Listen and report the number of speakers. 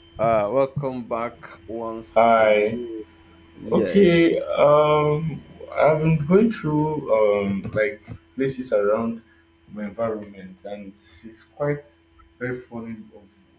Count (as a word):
two